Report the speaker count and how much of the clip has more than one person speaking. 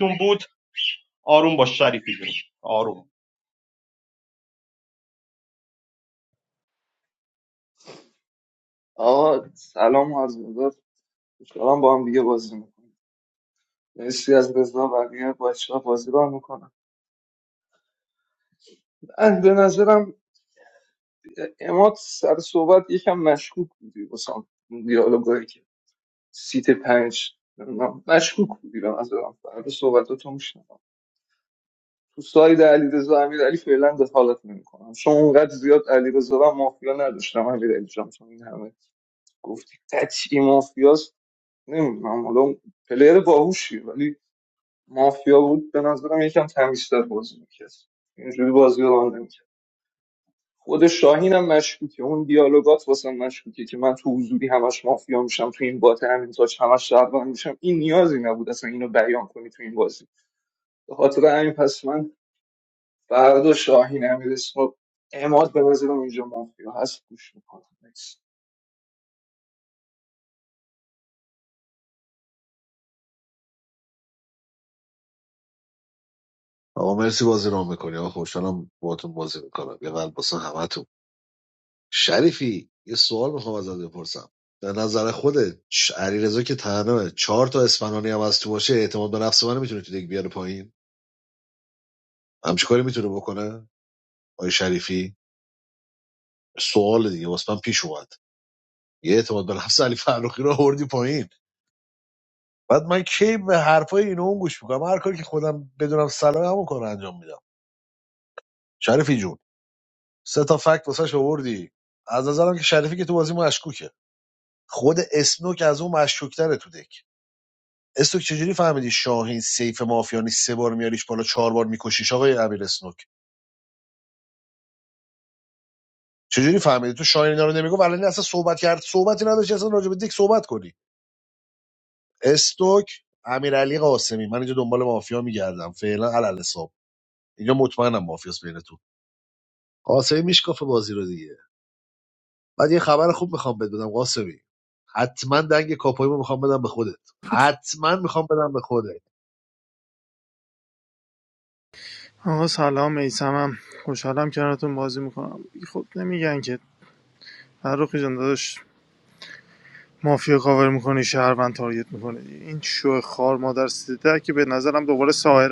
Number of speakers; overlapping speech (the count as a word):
four, no overlap